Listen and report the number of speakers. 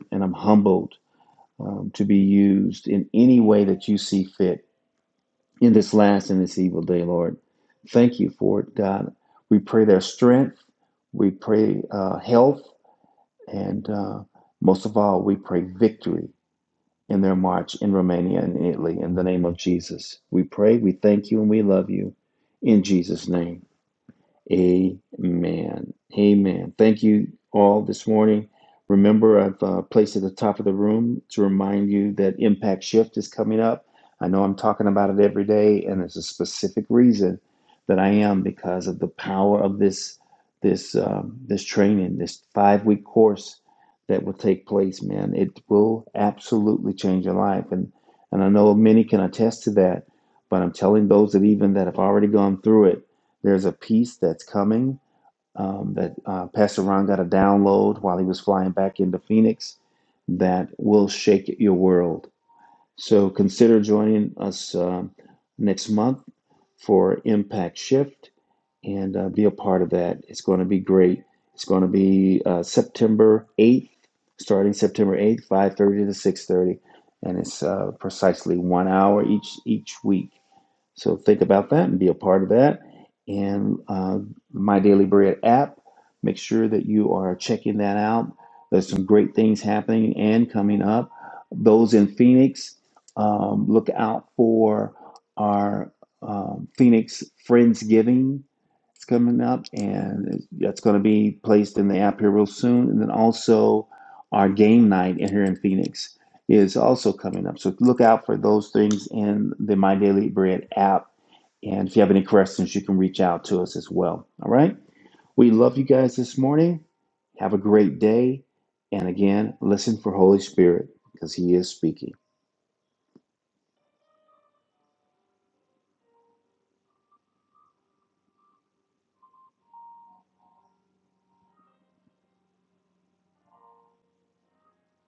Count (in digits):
1